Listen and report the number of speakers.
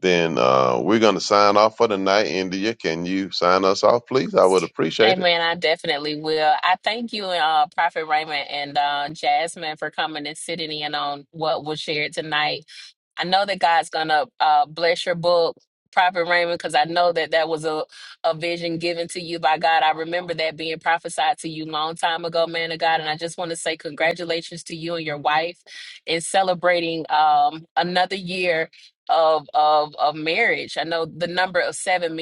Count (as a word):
two